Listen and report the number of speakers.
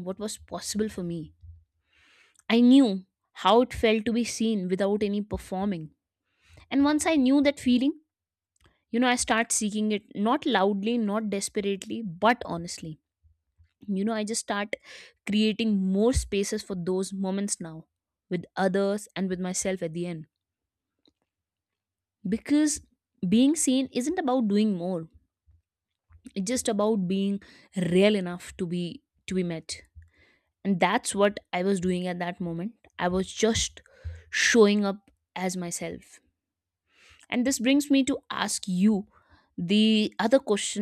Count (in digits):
1